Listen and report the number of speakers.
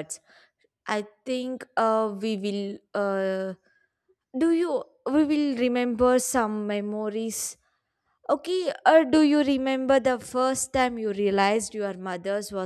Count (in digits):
1